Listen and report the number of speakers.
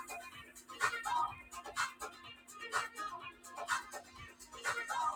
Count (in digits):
0